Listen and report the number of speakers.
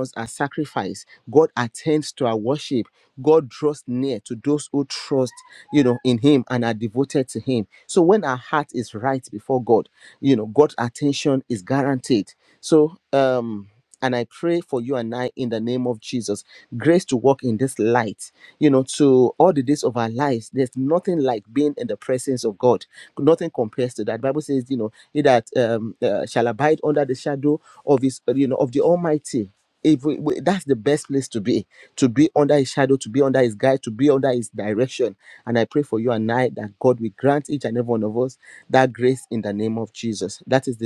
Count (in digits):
1